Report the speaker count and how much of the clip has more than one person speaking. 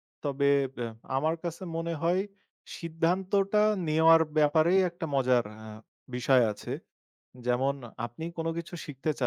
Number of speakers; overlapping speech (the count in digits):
1, no overlap